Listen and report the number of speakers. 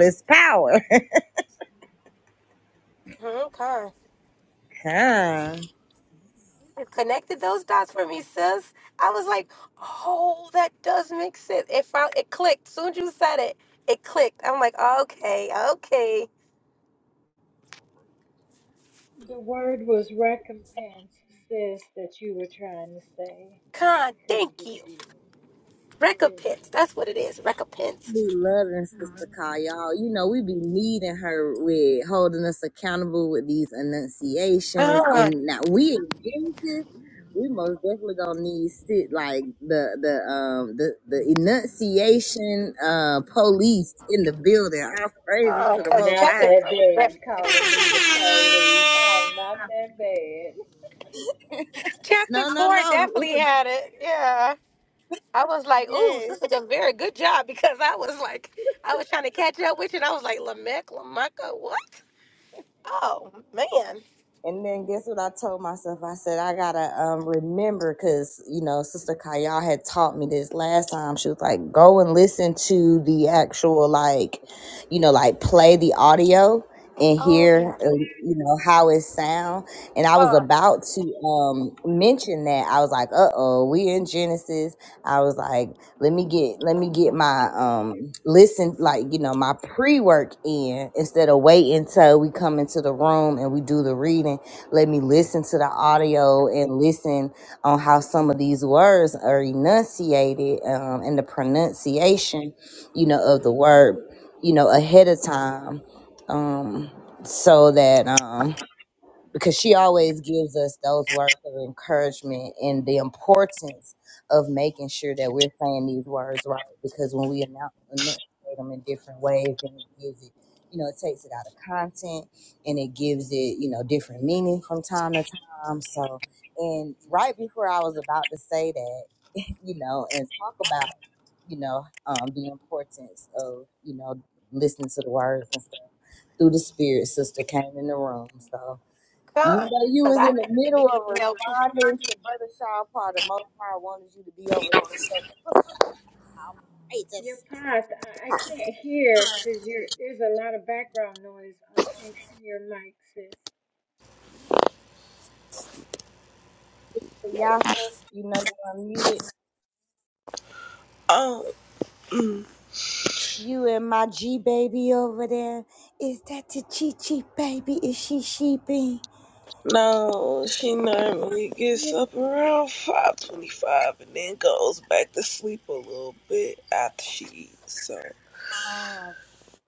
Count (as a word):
four